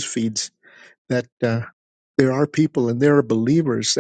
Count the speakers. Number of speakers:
one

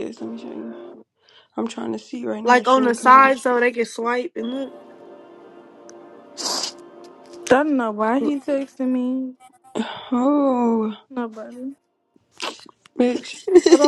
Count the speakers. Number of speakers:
three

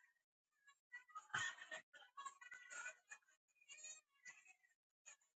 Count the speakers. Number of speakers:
zero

